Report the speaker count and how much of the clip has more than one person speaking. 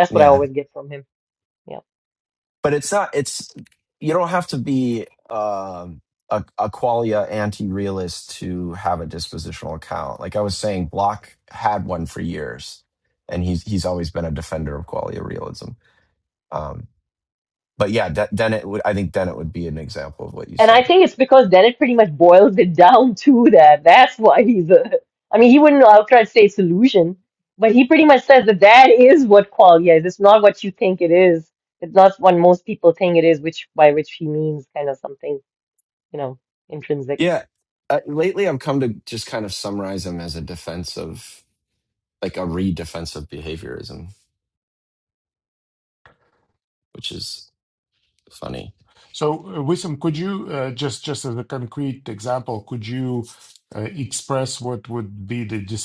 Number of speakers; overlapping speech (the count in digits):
3, about 1%